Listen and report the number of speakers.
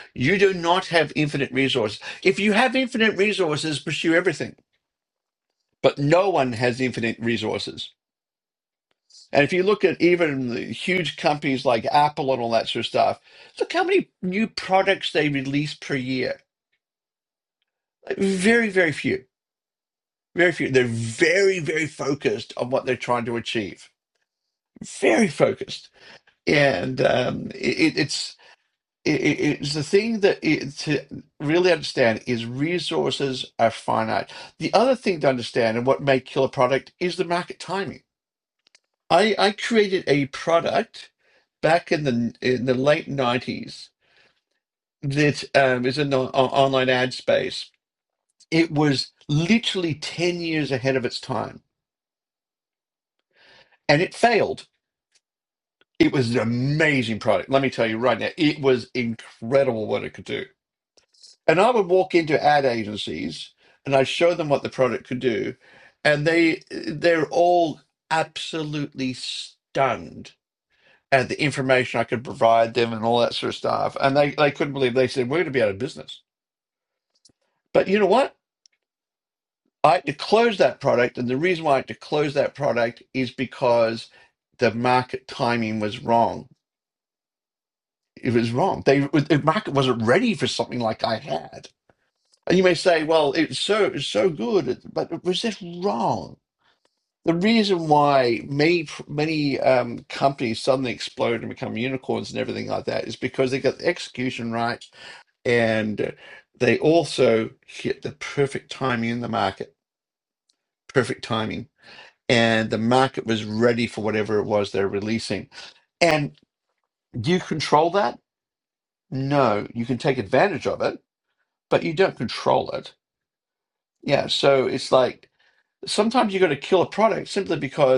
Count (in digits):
1